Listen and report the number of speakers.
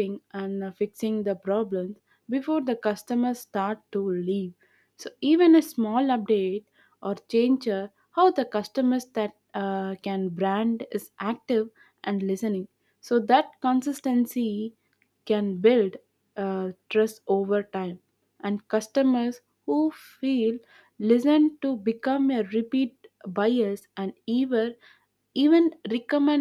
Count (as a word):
one